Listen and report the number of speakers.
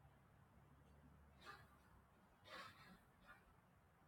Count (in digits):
0